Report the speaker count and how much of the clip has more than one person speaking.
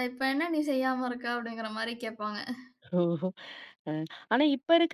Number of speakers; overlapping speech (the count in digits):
2, no overlap